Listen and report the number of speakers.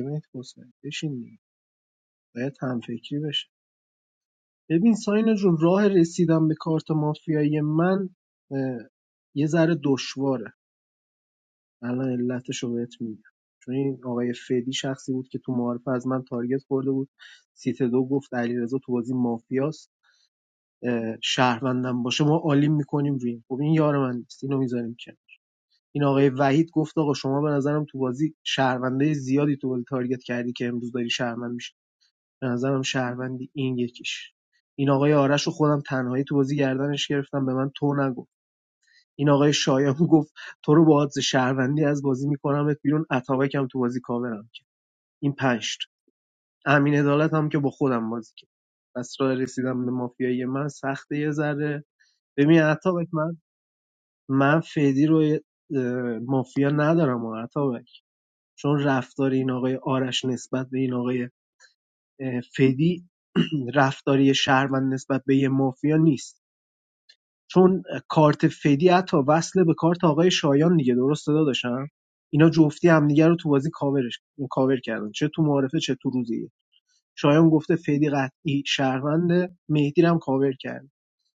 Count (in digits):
1